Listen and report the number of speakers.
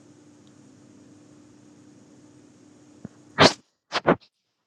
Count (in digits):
0